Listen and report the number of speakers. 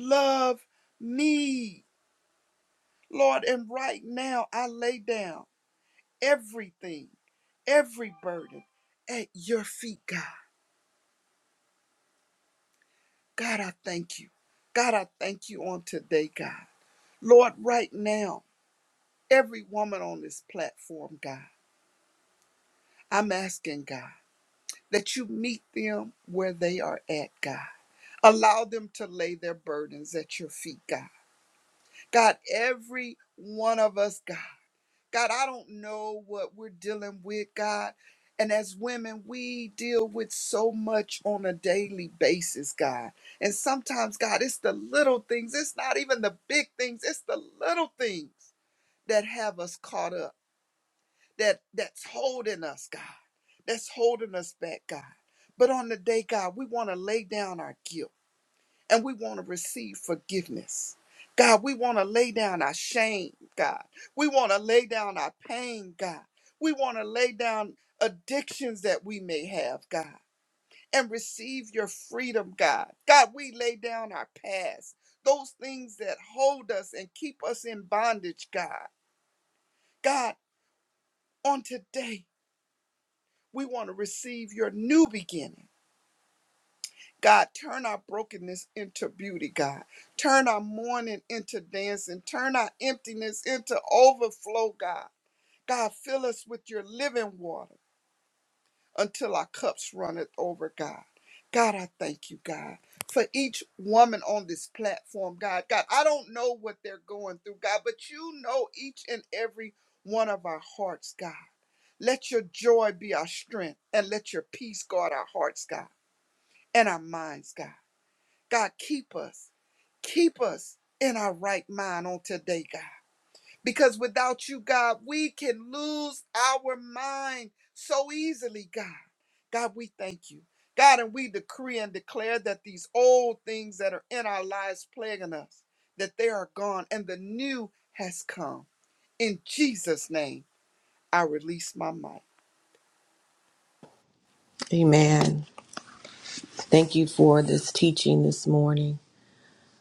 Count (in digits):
2